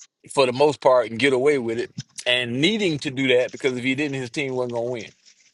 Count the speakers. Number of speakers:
1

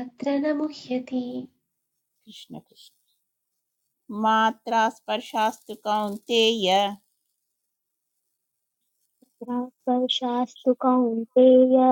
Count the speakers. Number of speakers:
3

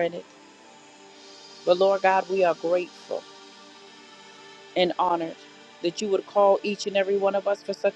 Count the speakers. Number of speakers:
1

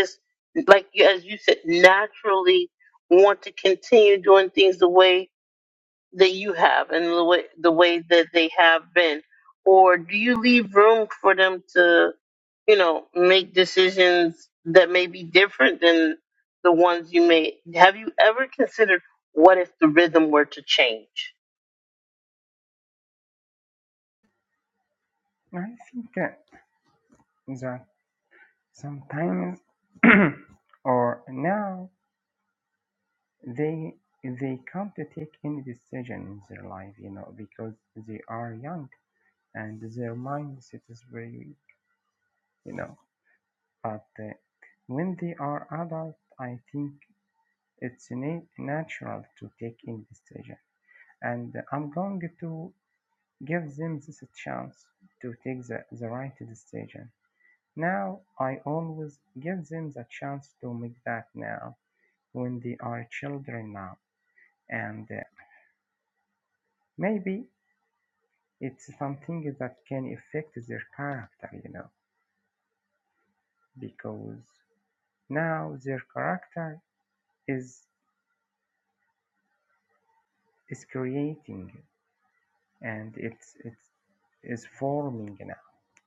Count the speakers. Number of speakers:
2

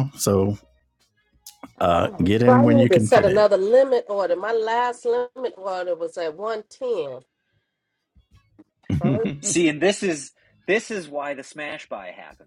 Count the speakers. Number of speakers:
3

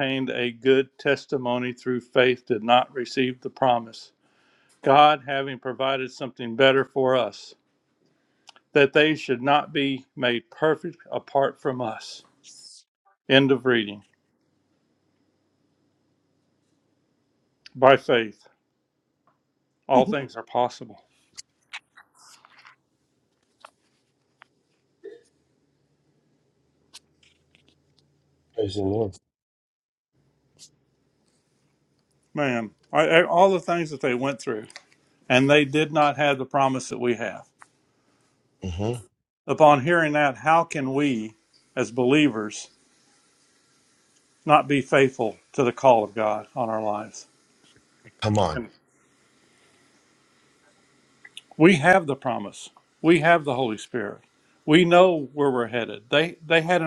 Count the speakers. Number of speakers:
2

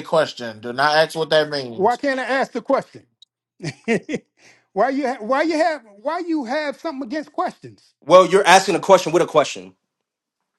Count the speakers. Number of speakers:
3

